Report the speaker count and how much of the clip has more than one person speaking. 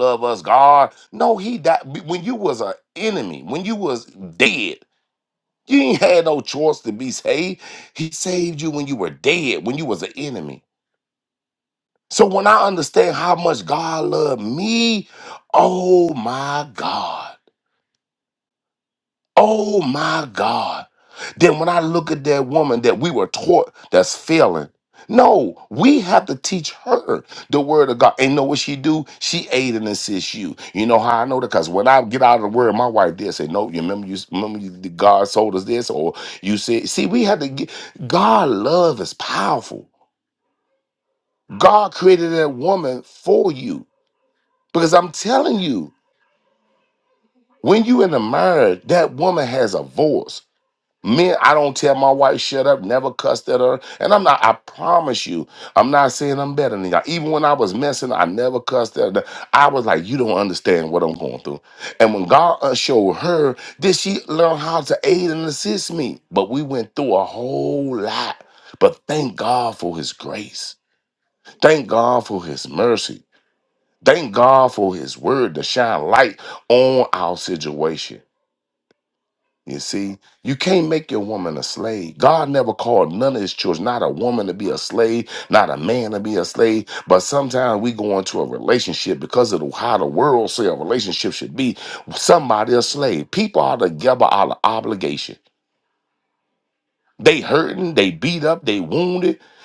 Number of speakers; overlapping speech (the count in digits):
1, no overlap